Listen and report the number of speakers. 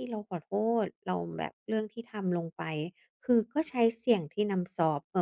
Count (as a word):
one